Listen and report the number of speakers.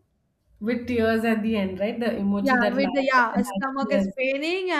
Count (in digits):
2